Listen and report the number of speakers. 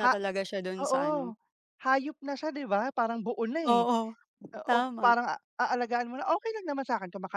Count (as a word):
two